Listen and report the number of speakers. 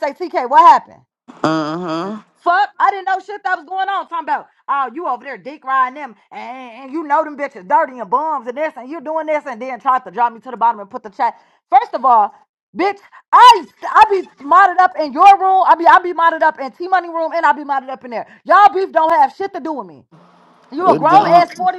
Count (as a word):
two